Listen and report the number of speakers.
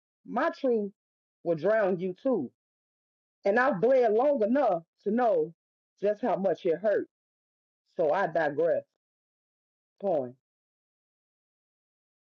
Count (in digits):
1